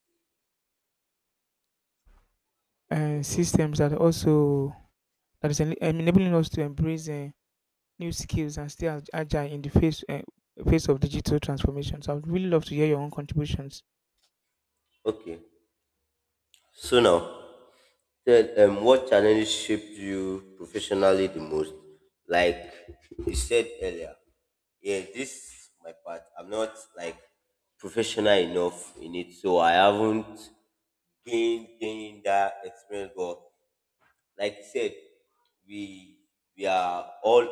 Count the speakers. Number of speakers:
two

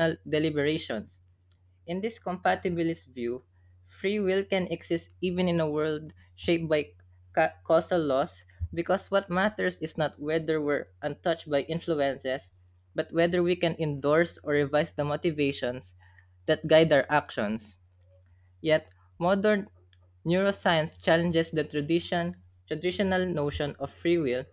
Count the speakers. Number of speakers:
one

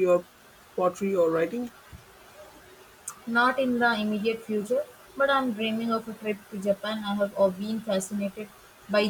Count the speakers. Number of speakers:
two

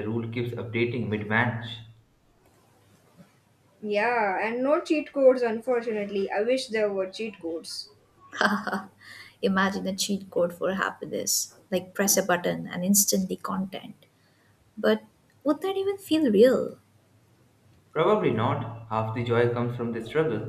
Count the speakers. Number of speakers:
three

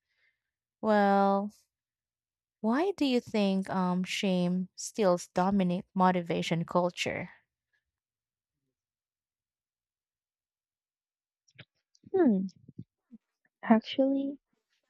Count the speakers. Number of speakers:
two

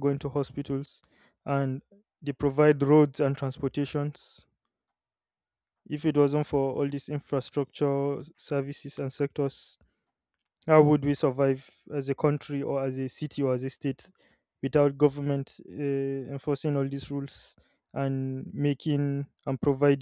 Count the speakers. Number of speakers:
one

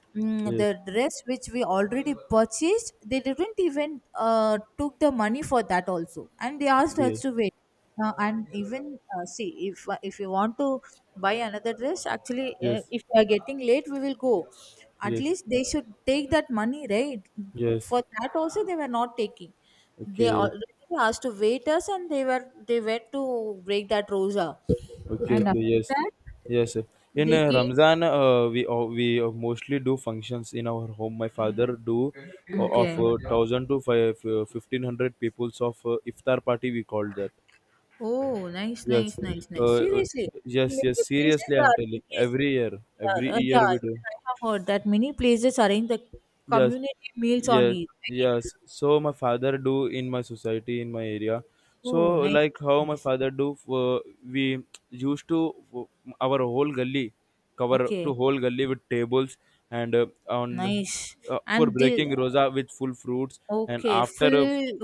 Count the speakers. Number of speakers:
two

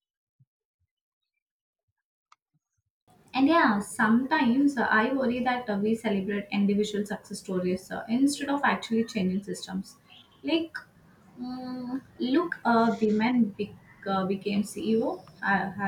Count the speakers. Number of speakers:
one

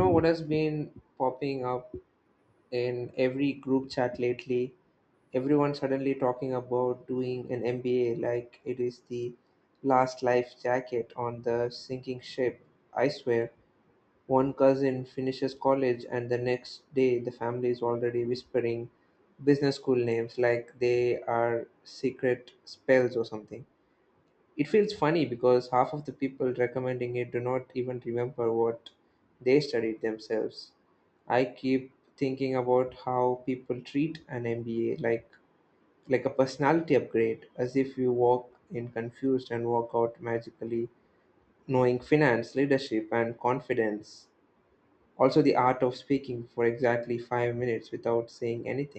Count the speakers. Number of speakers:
one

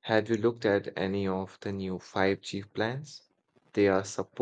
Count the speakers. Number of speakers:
one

